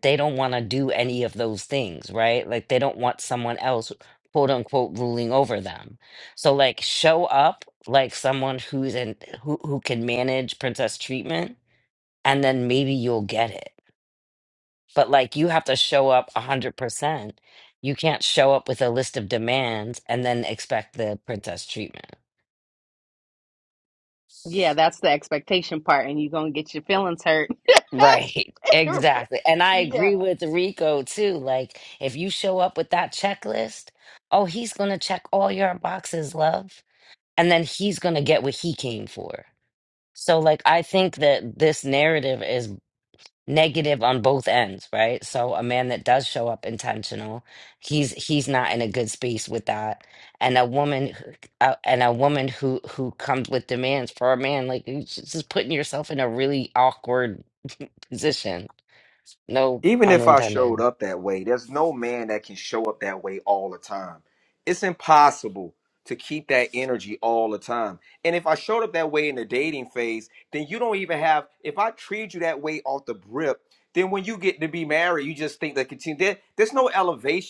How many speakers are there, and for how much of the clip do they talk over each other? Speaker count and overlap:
three, about 2%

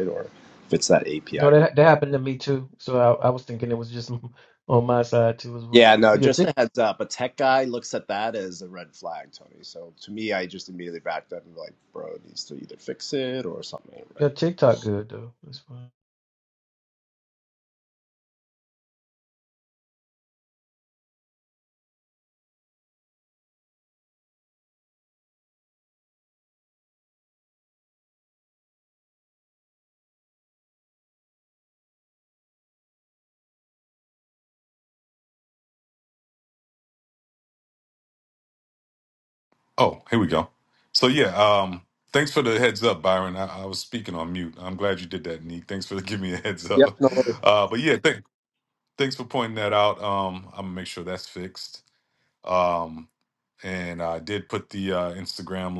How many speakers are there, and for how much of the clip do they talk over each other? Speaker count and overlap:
three, about 2%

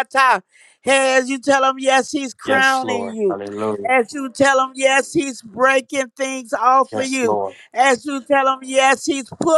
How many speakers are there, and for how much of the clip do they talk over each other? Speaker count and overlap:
two, about 15%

